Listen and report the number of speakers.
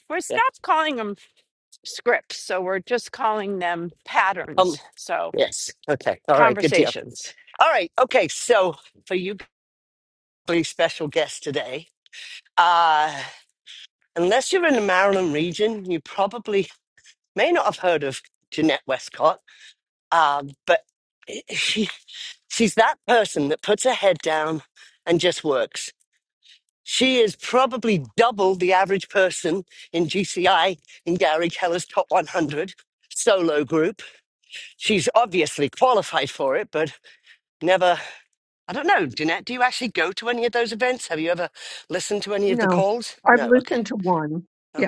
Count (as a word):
three